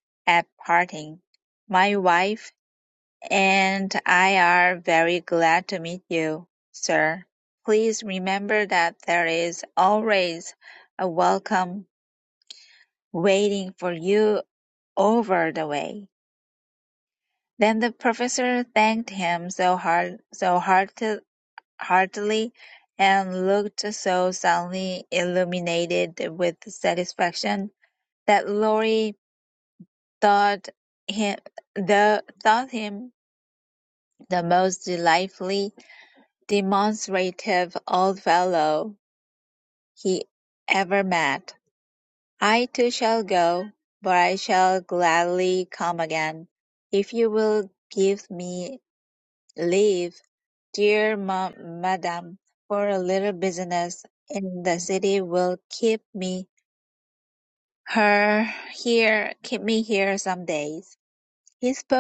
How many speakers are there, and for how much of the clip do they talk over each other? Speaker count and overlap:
one, no overlap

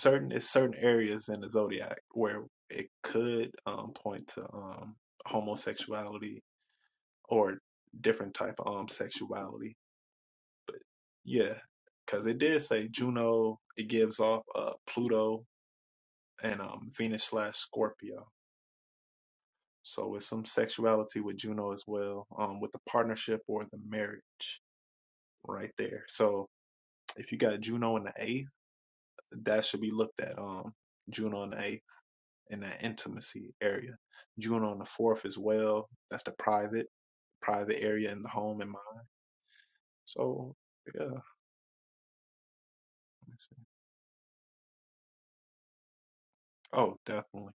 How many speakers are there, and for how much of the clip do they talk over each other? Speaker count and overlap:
one, no overlap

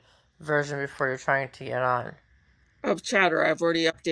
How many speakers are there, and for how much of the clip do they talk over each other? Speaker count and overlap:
two, no overlap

